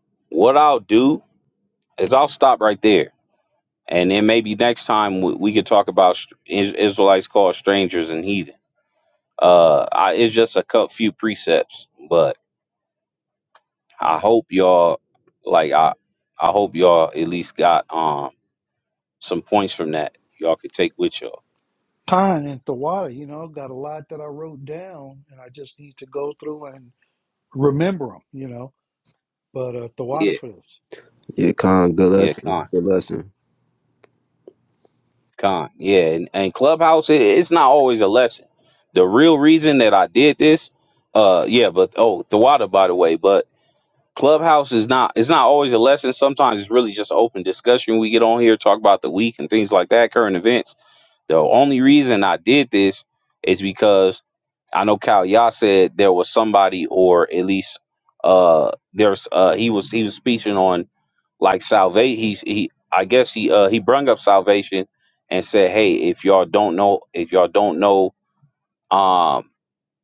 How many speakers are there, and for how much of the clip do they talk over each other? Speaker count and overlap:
3, about 1%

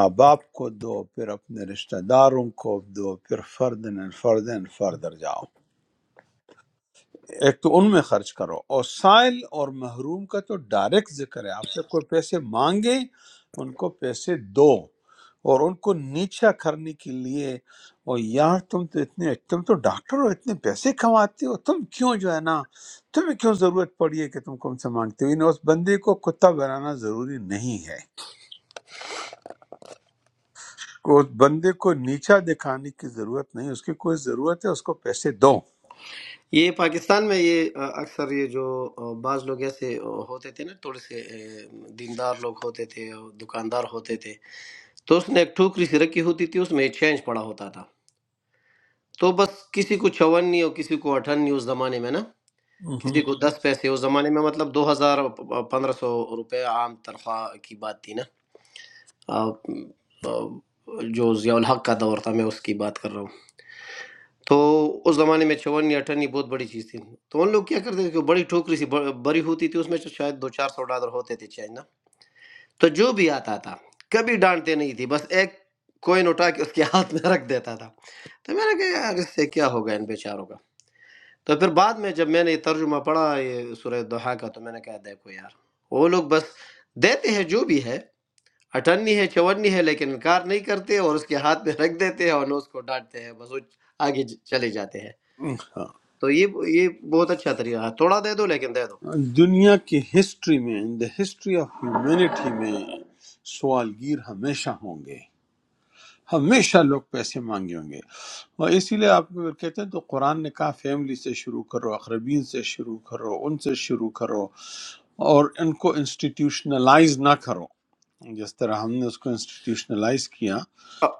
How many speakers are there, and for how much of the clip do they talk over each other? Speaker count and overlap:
2, under 1%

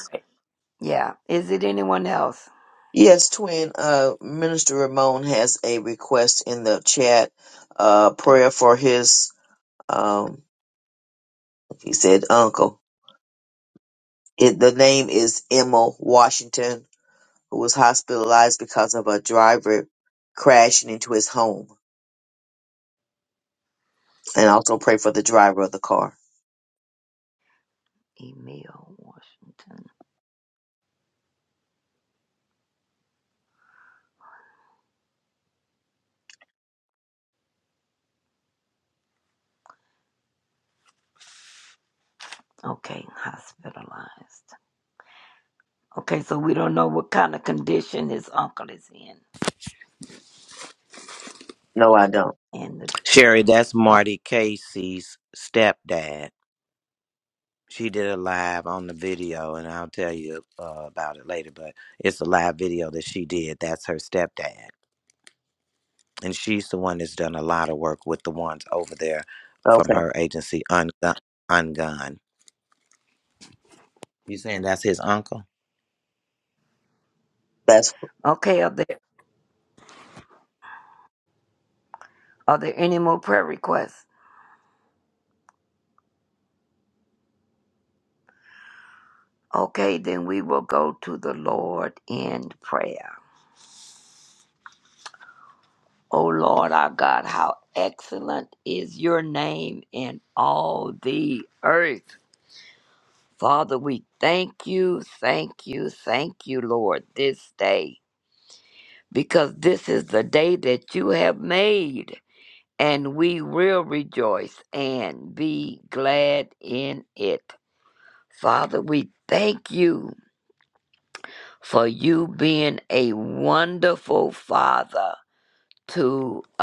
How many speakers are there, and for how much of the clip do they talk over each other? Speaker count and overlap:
3, under 1%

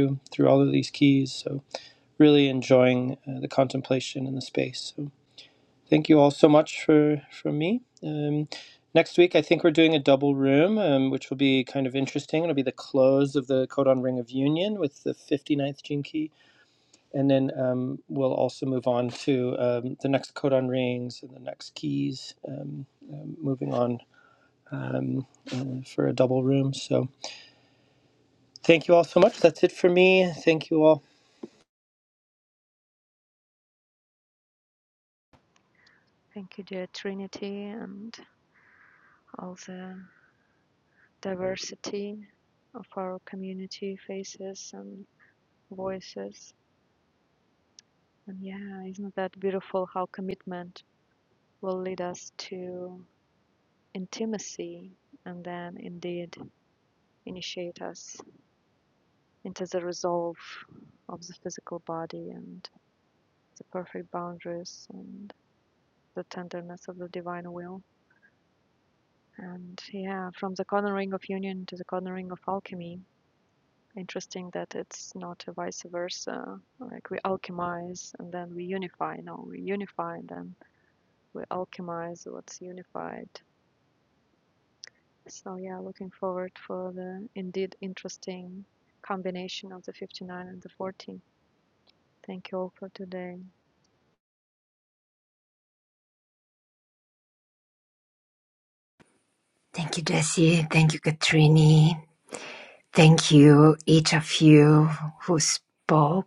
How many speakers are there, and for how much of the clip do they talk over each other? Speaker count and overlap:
3, no overlap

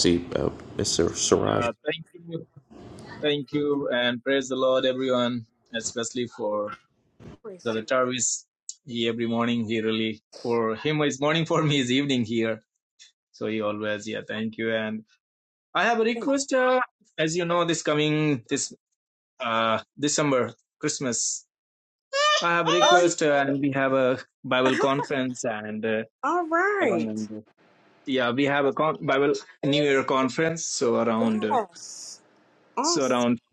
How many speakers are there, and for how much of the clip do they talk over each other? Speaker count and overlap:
3, about 4%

